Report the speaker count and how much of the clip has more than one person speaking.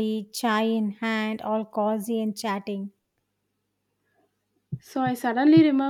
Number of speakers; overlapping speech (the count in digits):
2, no overlap